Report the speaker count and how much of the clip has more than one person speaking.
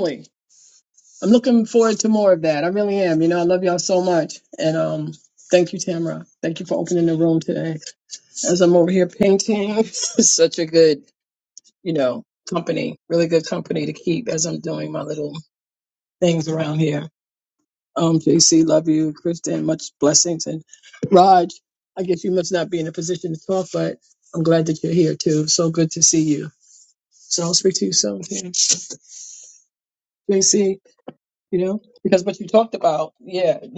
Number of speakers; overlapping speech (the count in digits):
1, no overlap